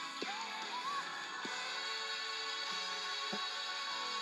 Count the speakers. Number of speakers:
0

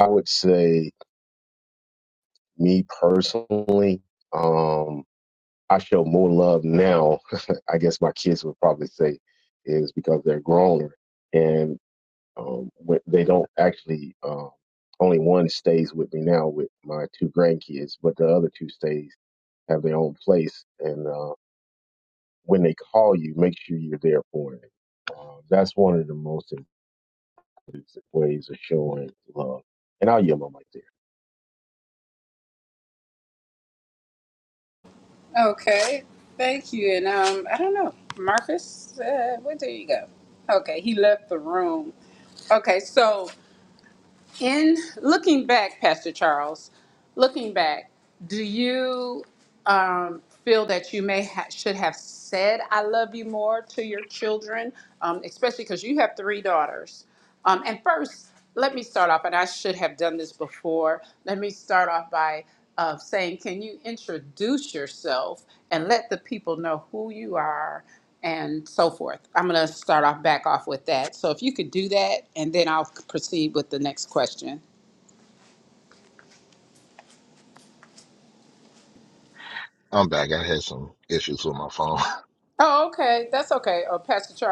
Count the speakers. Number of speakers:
3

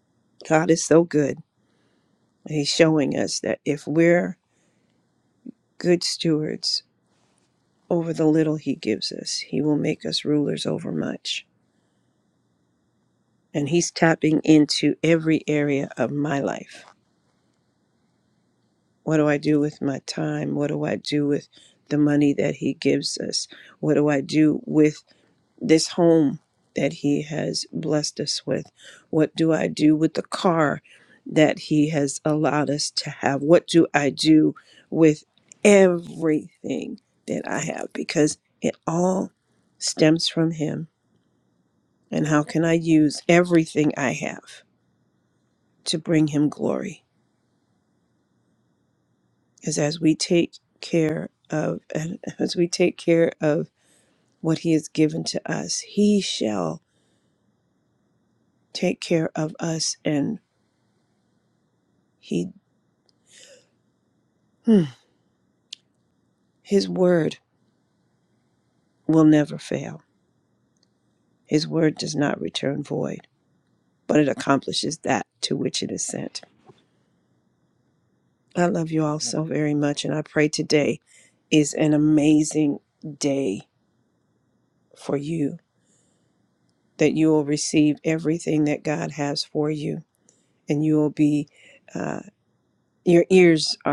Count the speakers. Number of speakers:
1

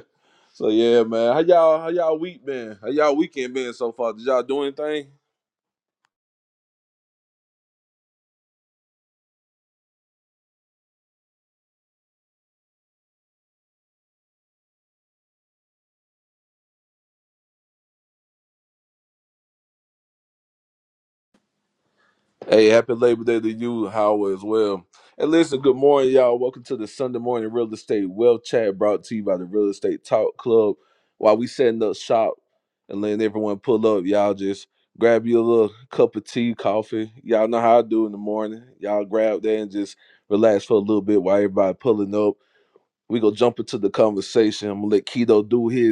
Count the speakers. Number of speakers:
1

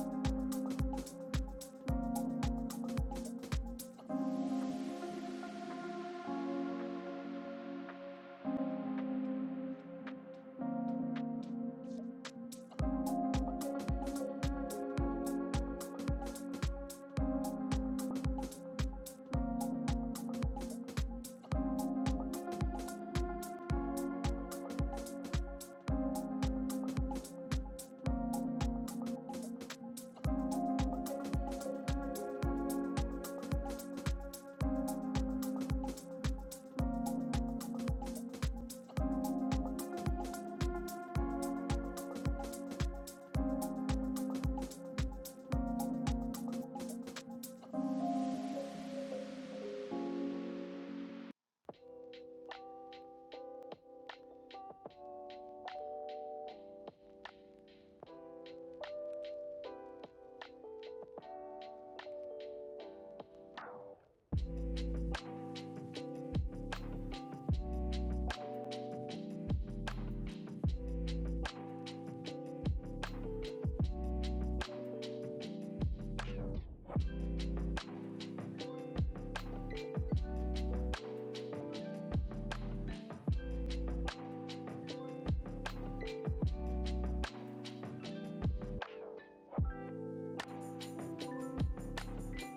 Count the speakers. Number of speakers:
0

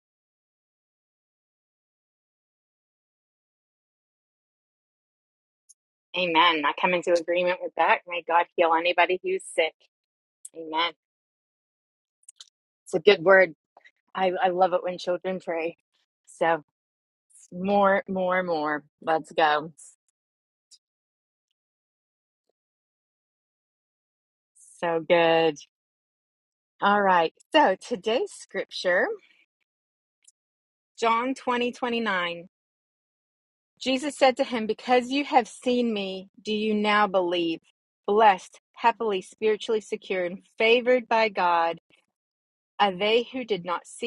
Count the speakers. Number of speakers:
1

